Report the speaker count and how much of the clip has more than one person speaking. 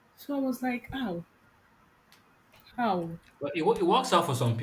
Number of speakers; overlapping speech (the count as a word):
two, no overlap